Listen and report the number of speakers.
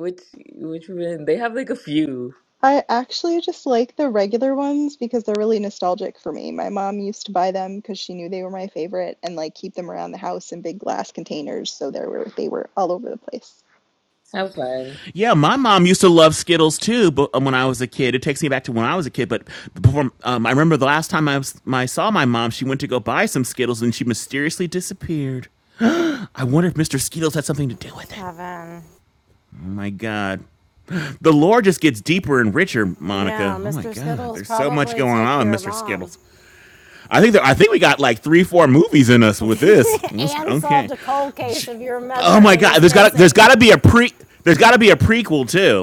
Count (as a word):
four